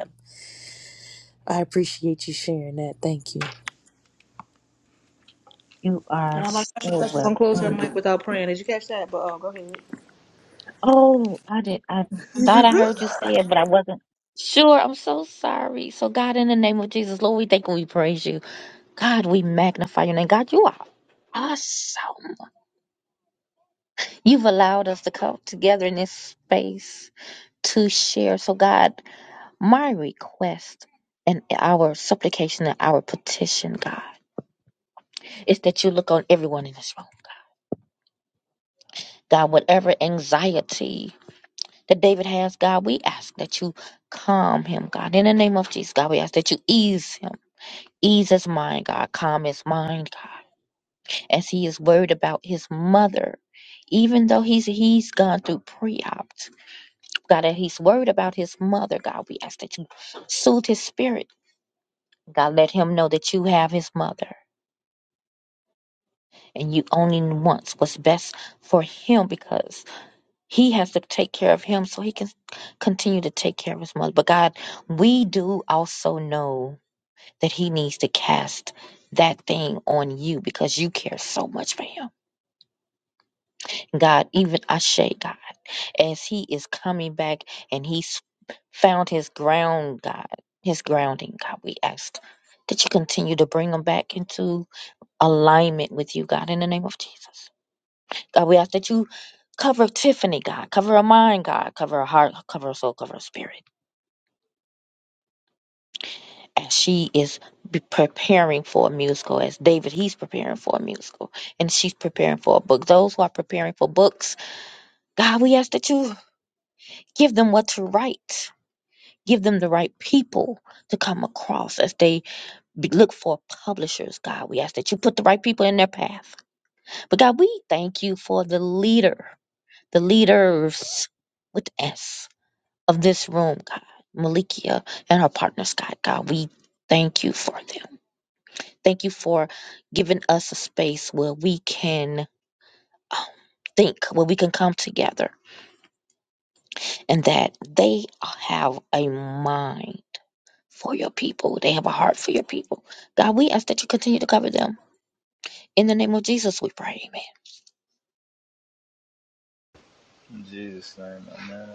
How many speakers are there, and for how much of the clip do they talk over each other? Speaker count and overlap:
four, under 1%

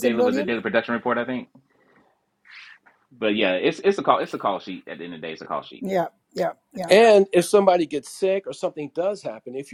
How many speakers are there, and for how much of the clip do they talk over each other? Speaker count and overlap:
three, about 6%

